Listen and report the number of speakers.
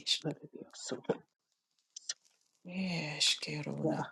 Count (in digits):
2